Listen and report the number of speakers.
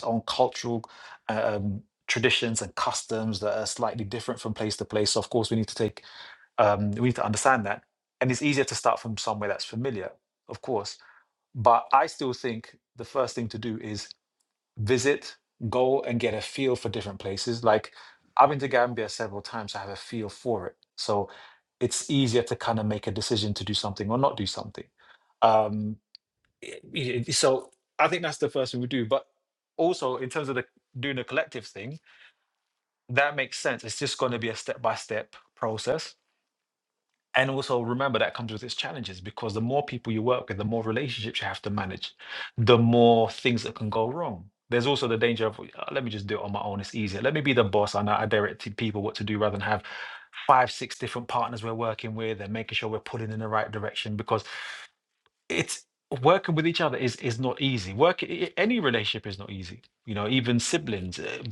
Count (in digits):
1